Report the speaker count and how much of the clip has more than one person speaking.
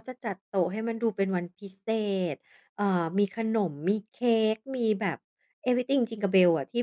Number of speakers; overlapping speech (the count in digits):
1, no overlap